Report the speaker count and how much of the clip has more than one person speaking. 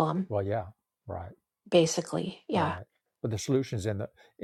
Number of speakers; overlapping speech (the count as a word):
two, about 5%